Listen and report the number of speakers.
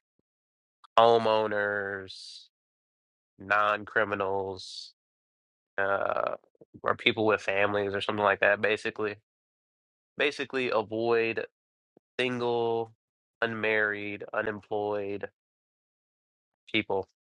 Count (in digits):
1